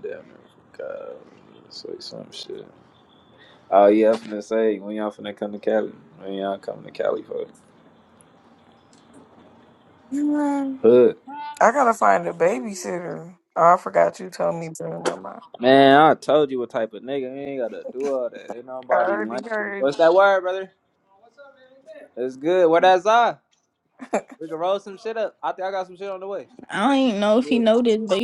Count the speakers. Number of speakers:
3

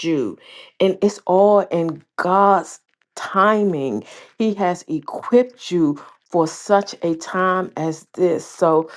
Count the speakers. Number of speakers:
1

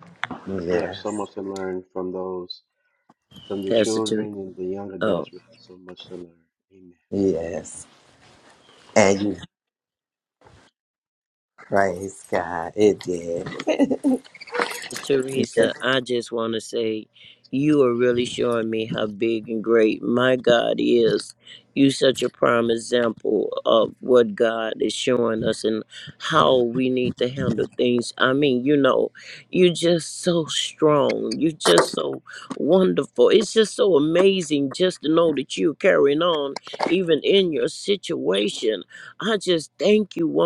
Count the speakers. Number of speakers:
3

